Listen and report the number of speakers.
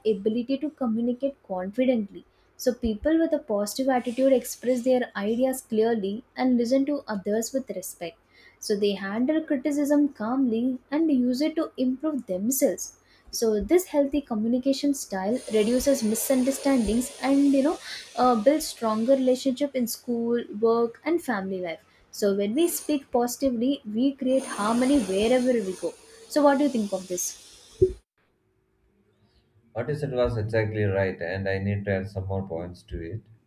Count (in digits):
2